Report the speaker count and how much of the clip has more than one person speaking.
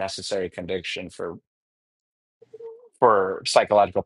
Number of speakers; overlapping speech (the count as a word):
one, no overlap